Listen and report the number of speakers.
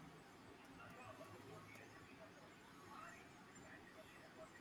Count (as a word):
zero